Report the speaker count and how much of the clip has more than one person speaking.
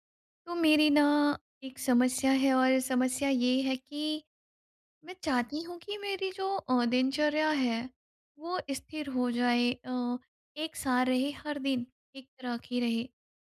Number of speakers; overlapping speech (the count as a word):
one, no overlap